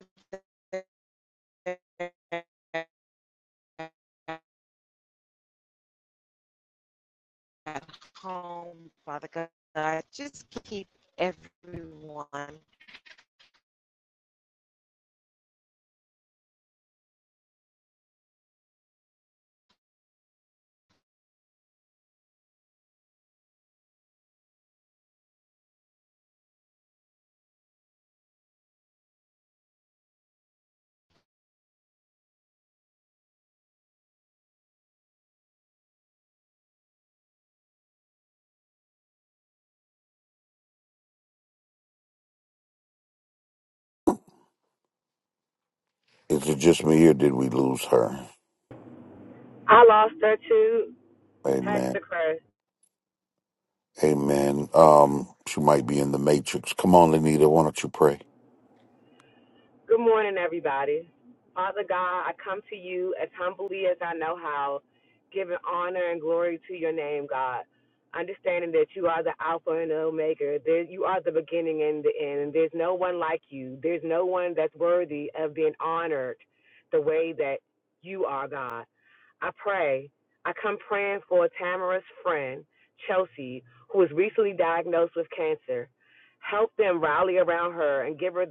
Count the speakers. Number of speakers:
3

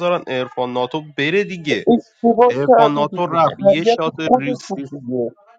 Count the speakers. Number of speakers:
2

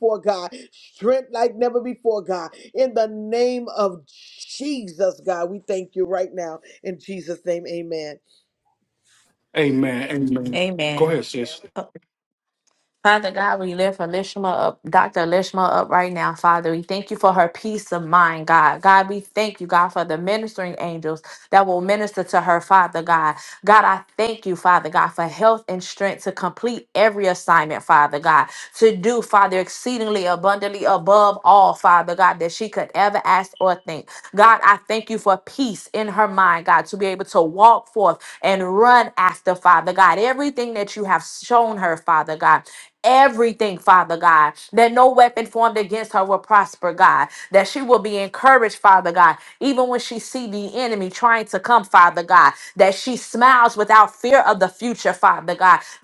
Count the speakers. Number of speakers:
3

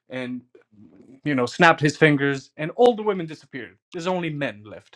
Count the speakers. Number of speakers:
1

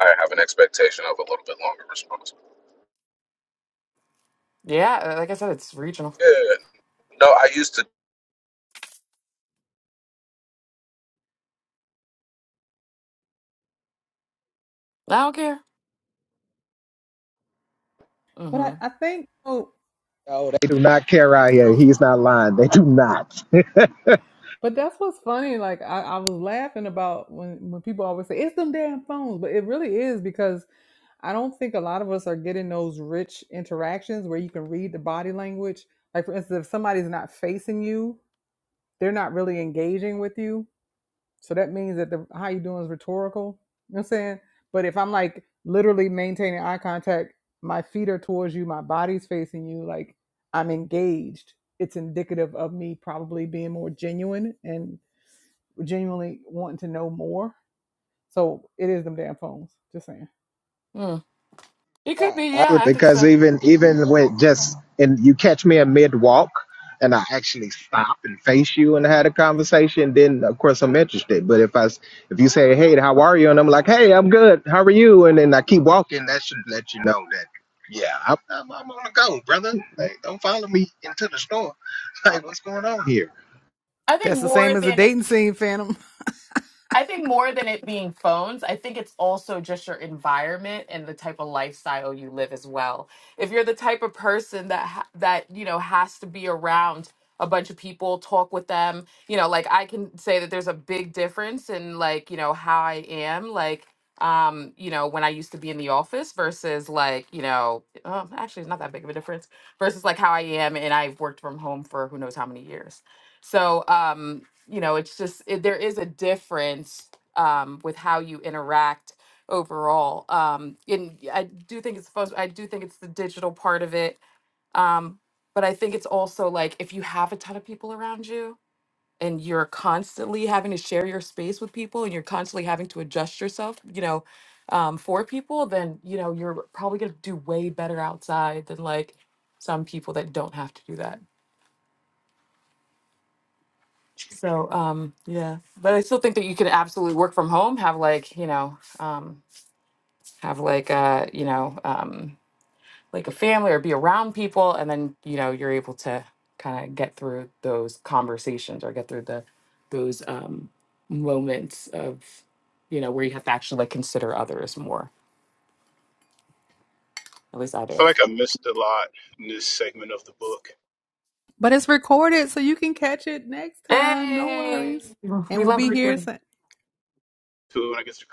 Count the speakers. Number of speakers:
5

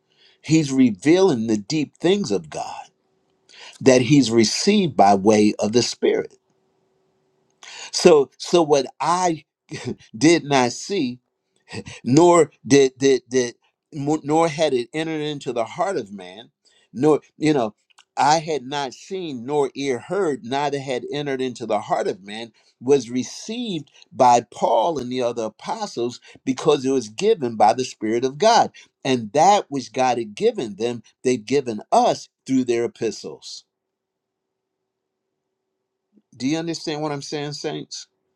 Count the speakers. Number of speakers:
1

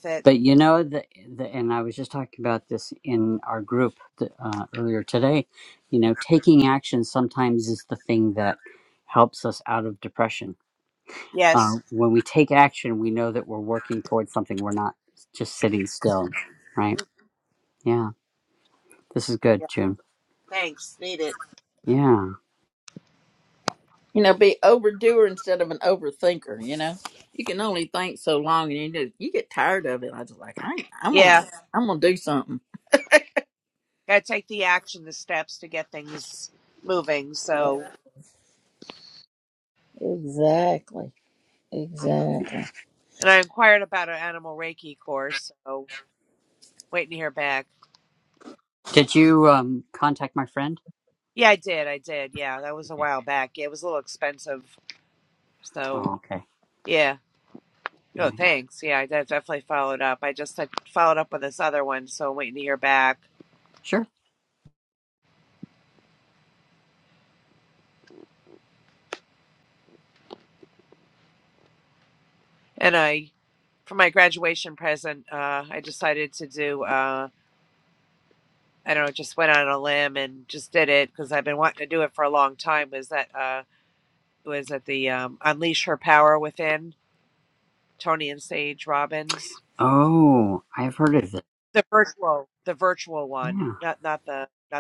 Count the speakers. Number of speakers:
3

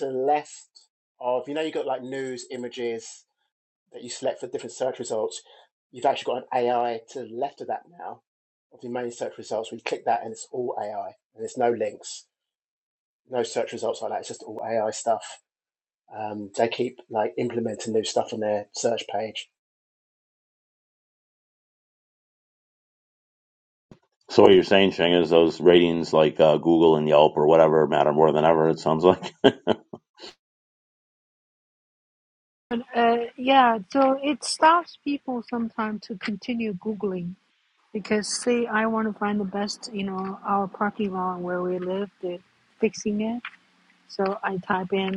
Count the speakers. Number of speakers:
3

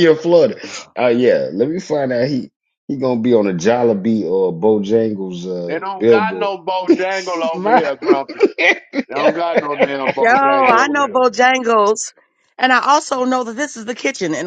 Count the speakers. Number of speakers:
3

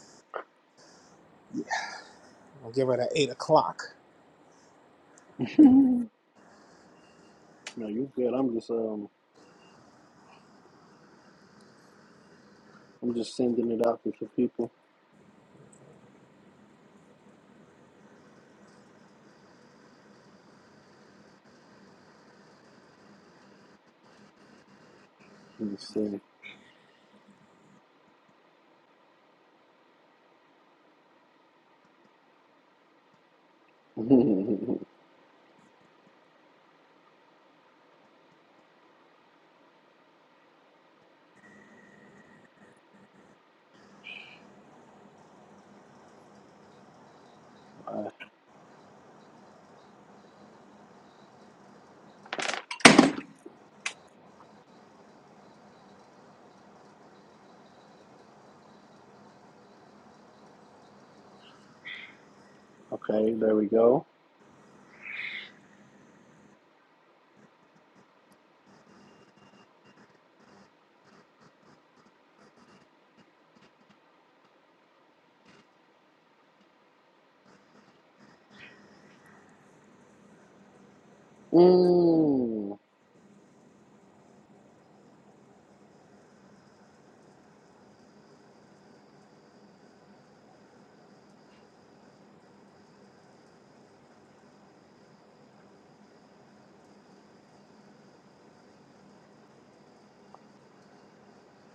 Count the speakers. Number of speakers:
2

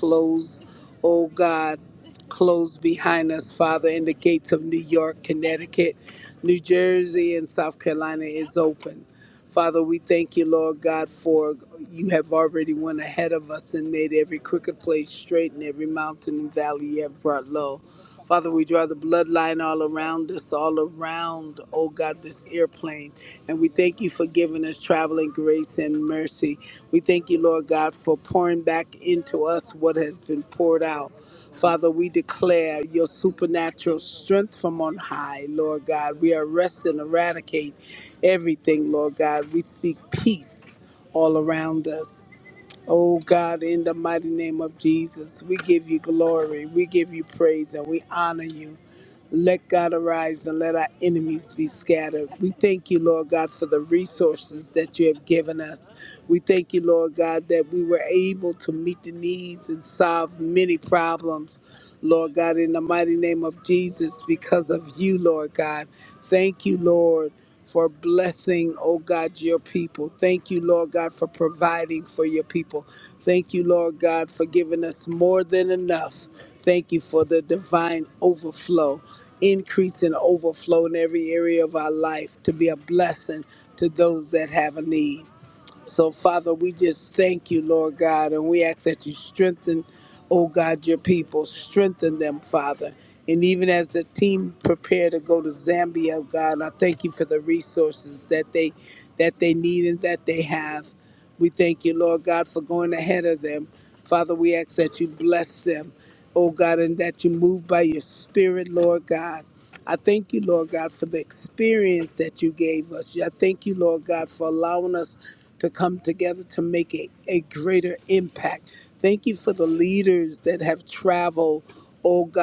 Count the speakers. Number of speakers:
1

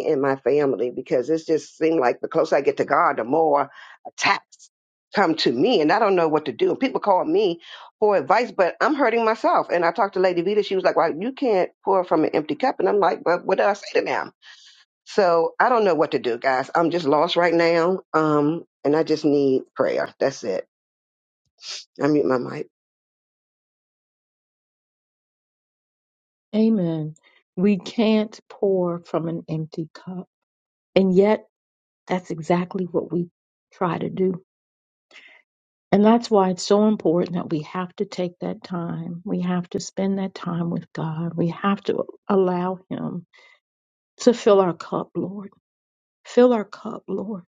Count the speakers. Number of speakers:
2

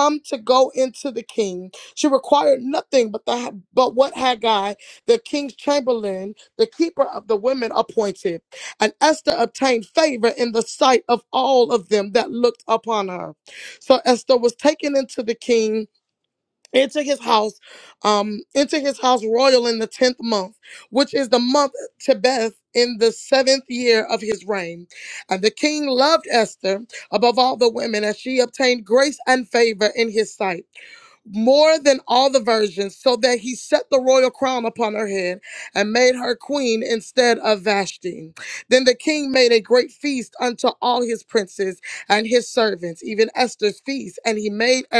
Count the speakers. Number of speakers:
1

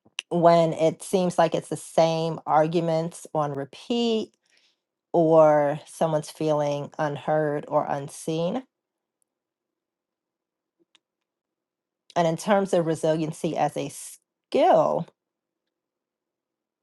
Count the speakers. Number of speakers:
1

